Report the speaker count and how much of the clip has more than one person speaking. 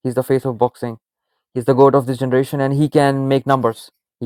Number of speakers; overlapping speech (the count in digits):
1, no overlap